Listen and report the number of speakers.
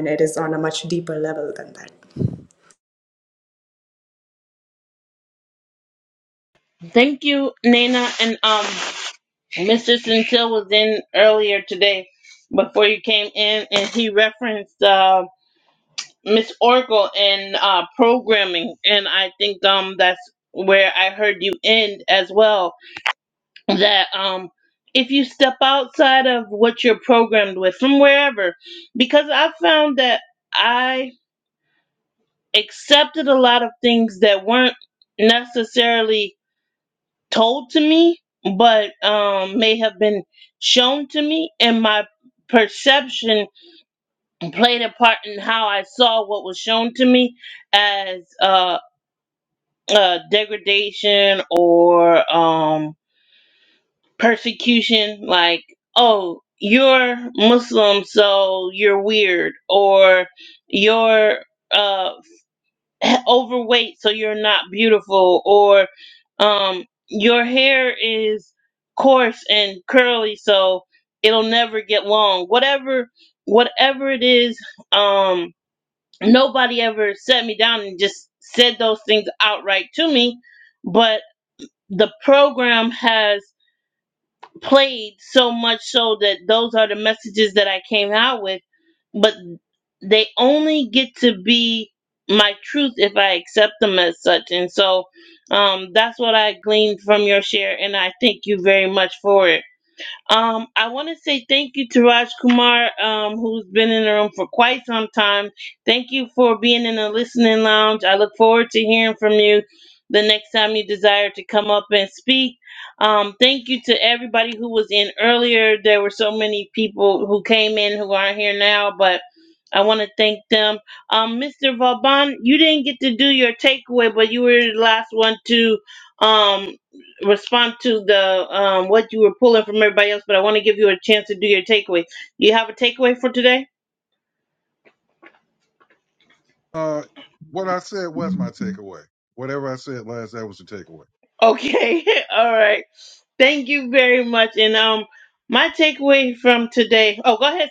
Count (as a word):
three